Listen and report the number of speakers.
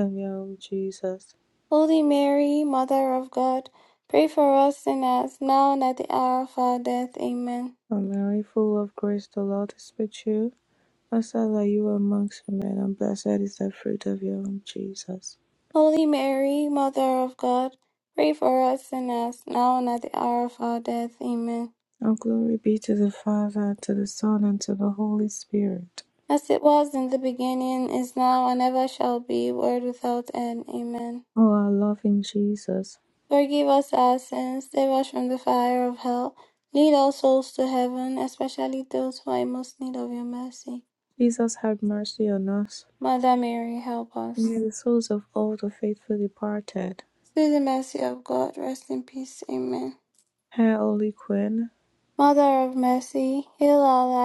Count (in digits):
2